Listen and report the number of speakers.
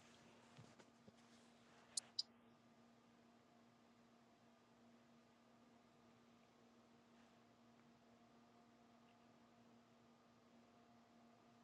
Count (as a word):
zero